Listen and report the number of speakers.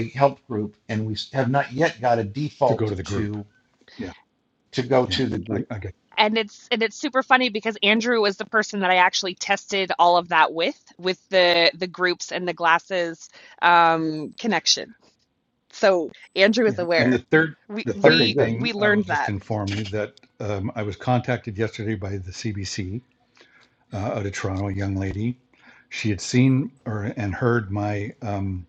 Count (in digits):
3